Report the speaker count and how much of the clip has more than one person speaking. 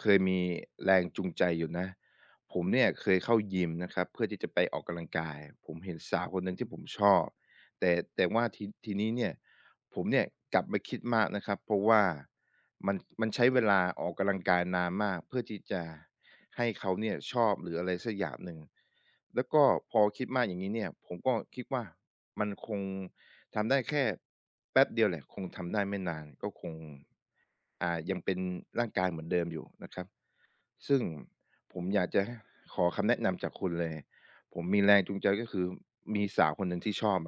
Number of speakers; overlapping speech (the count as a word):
one, no overlap